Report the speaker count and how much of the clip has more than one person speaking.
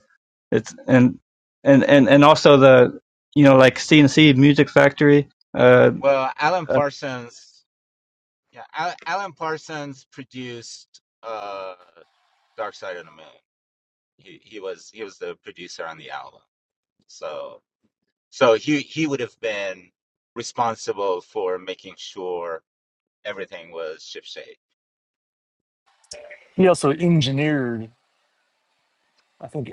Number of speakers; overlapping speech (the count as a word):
three, under 1%